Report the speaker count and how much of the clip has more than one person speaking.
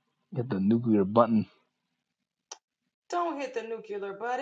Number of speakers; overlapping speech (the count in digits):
2, no overlap